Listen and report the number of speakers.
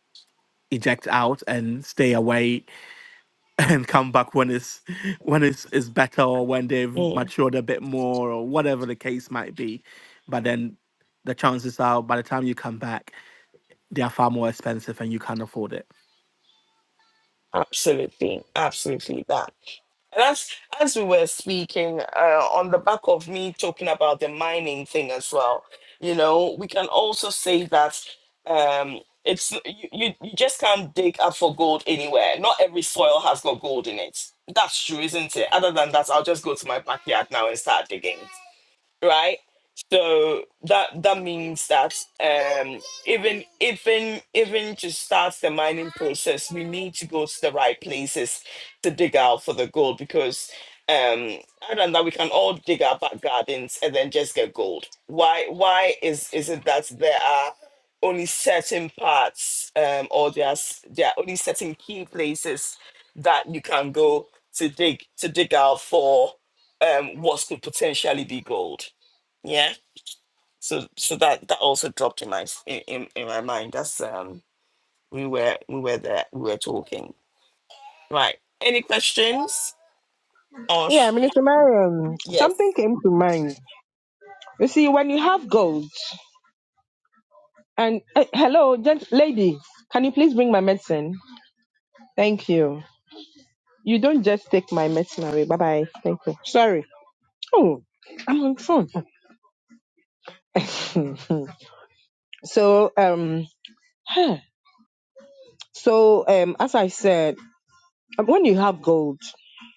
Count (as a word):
three